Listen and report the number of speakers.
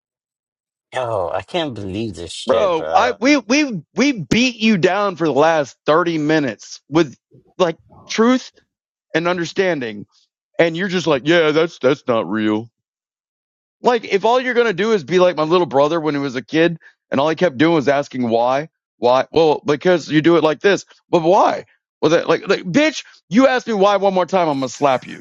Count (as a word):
two